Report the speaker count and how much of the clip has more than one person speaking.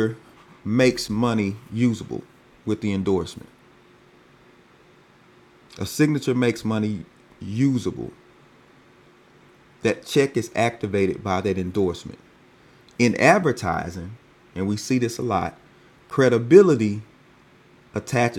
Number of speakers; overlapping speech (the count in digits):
1, no overlap